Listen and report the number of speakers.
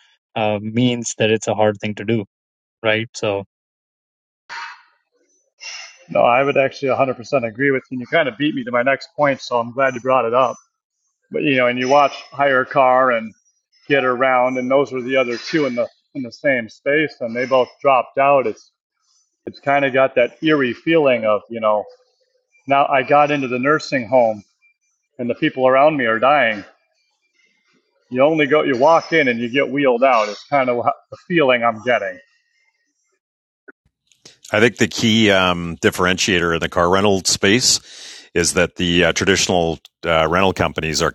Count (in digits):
3